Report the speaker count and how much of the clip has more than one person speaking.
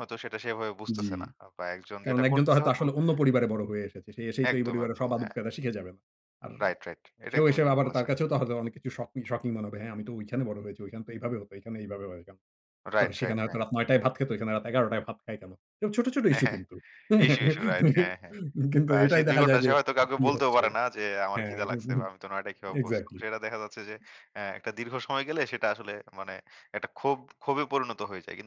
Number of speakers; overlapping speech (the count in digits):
2, about 20%